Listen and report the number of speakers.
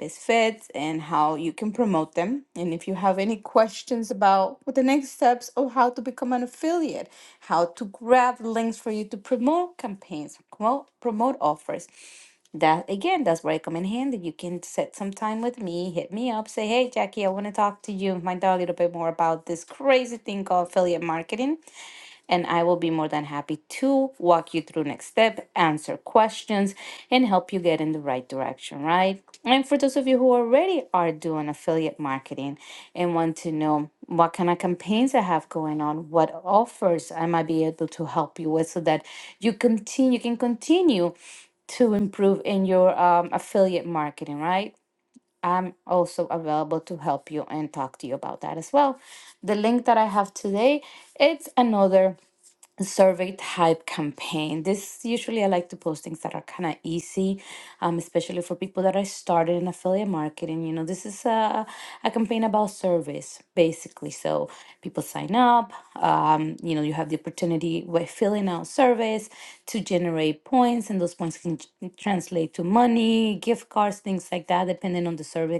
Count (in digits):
1